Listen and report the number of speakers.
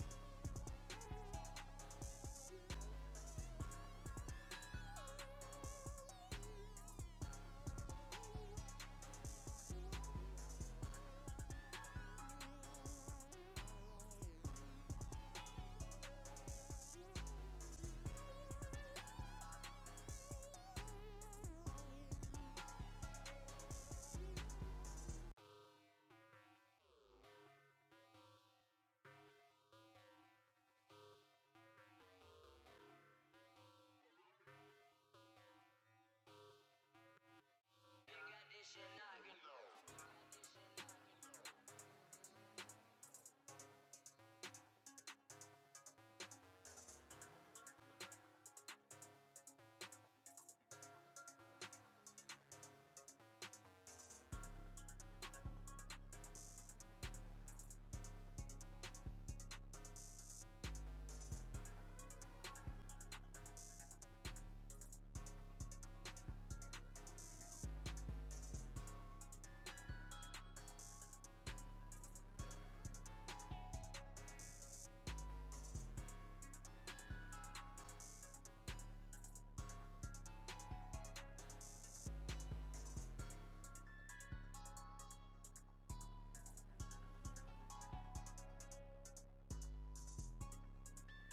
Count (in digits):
0